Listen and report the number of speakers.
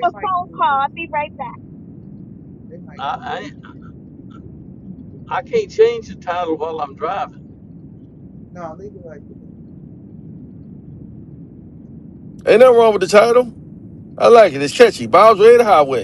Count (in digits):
4